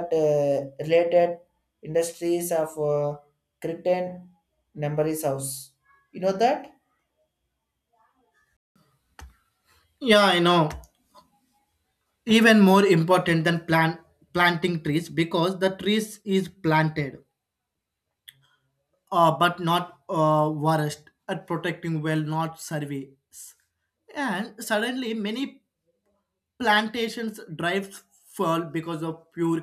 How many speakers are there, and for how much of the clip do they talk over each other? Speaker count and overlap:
2, no overlap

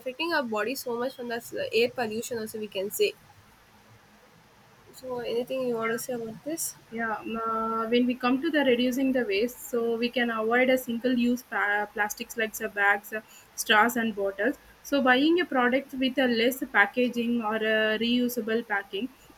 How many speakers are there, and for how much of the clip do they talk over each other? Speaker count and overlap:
2, no overlap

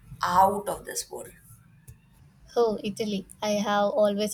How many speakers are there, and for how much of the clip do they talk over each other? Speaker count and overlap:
2, no overlap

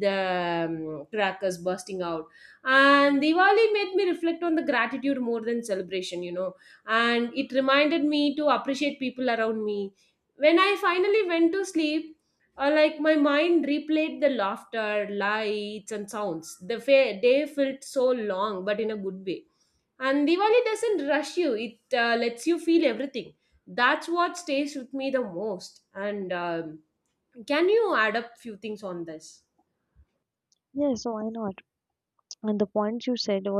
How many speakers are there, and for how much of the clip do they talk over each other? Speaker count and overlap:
2, no overlap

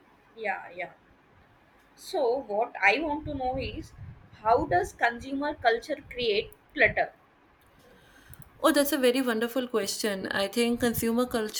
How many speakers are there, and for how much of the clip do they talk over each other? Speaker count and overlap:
2, no overlap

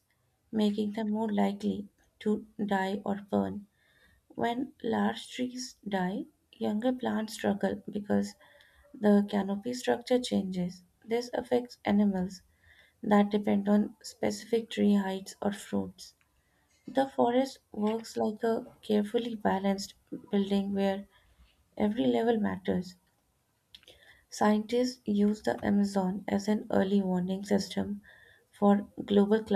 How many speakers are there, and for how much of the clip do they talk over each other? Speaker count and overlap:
1, no overlap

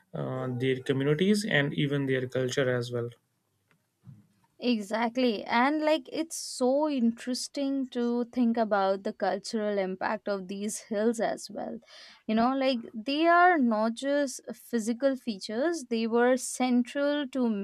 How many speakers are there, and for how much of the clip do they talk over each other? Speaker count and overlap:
2, no overlap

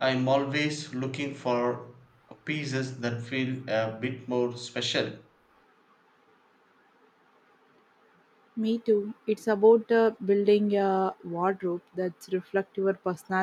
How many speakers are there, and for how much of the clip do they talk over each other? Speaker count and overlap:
2, no overlap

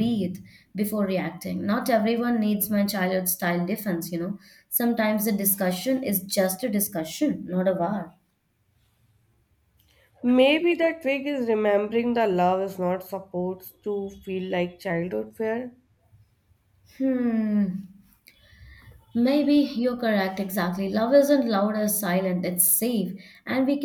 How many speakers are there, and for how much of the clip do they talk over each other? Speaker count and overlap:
2, no overlap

